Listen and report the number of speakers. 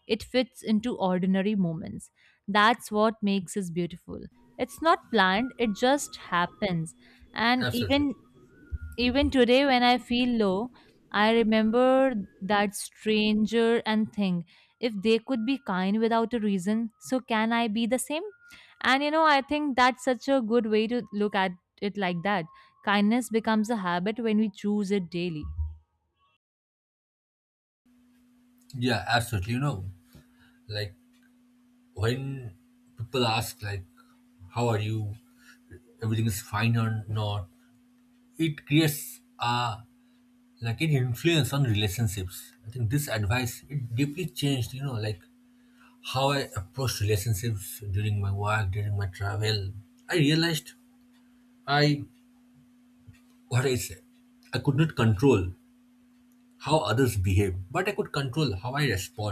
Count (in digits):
2